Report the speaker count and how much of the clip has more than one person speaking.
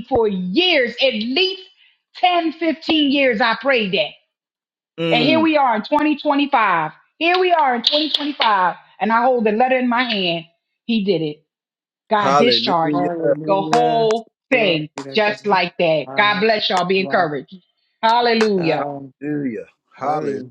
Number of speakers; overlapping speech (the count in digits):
3, about 21%